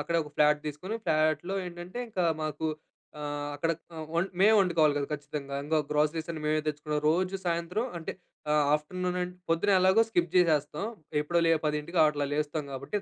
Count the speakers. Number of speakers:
1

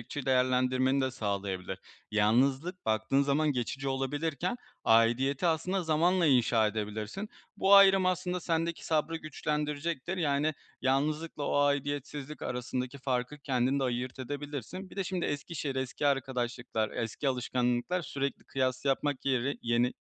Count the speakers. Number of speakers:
1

